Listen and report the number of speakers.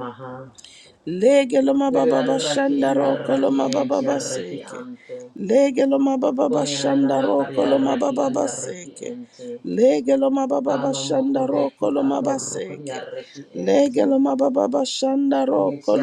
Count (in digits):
2